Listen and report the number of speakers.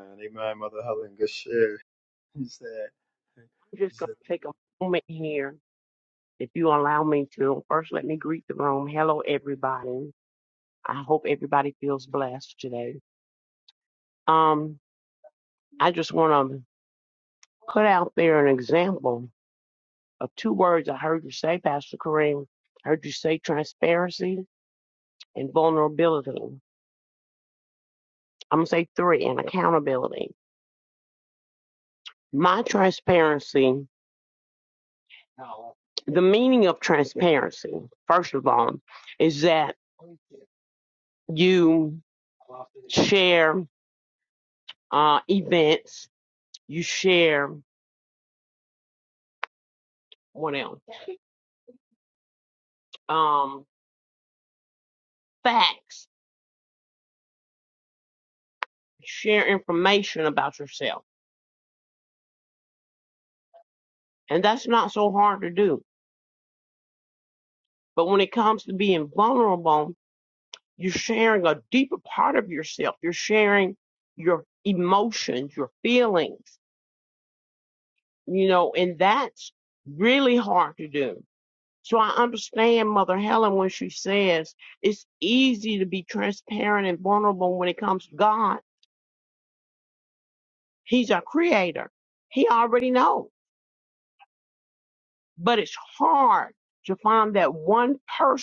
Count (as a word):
two